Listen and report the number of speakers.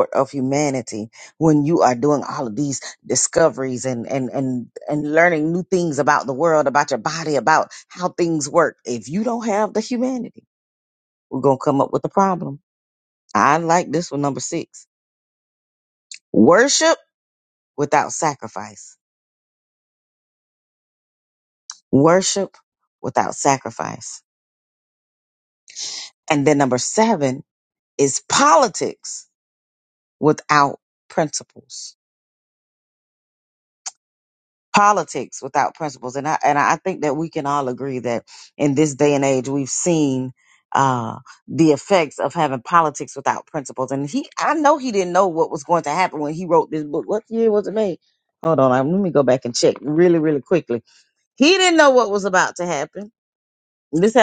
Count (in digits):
1